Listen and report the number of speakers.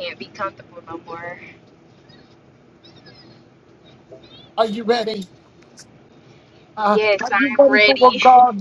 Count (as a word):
two